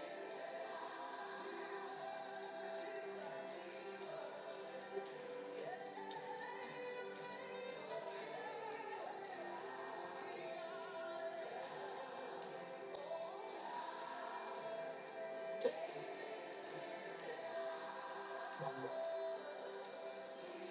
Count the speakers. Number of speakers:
zero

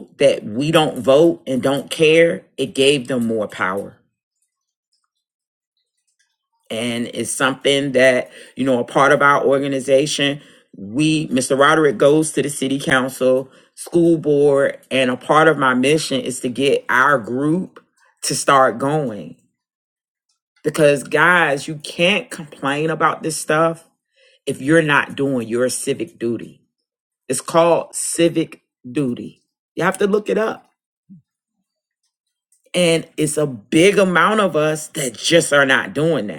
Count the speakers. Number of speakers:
one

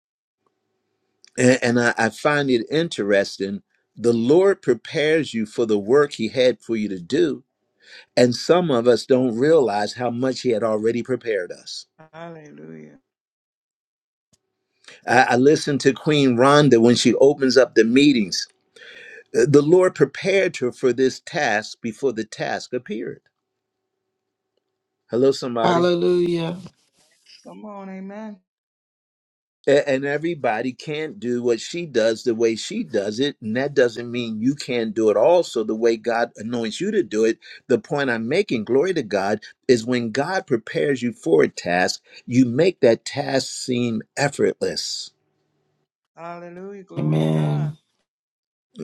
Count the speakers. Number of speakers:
three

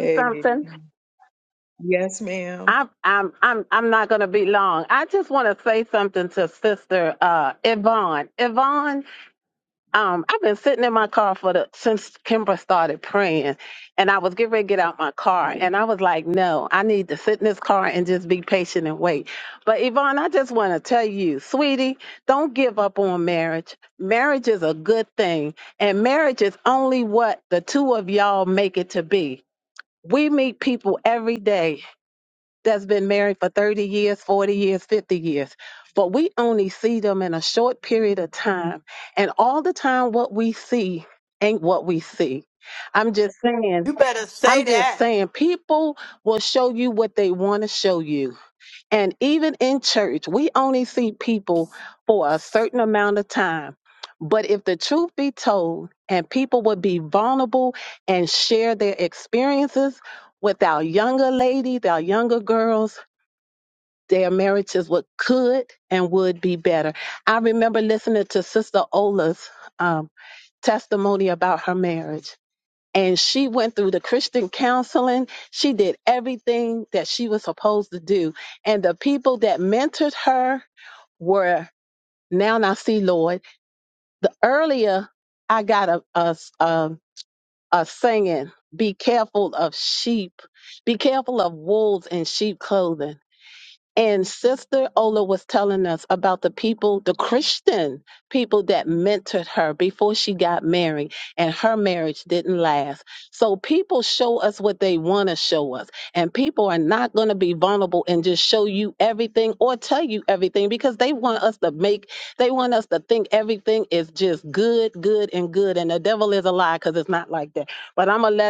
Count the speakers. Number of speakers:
three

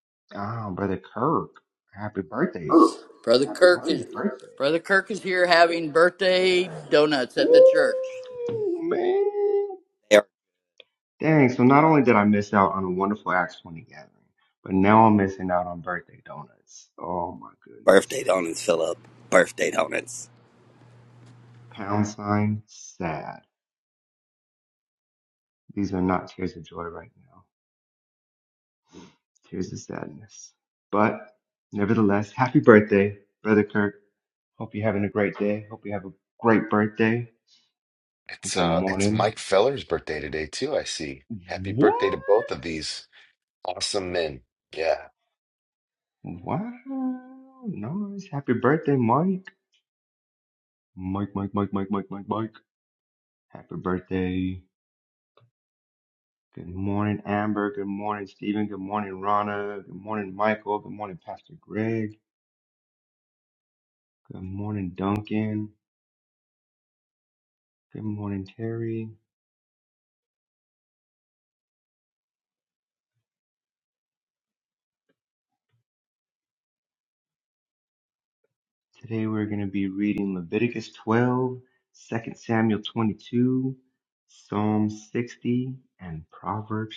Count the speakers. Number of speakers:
four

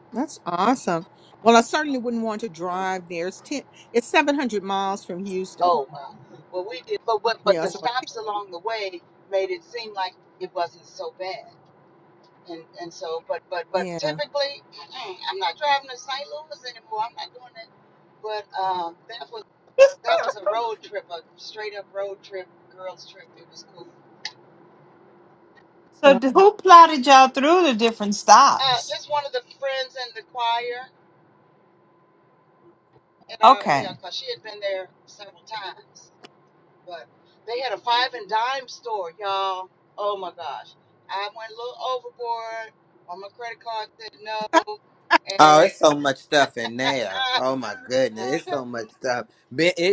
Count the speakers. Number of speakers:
four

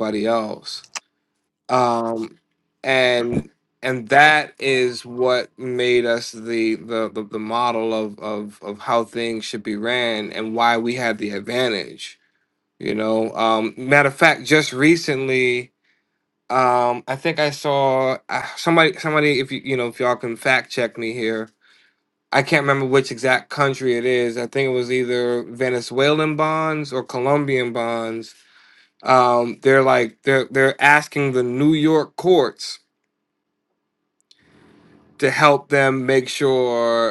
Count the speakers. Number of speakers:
one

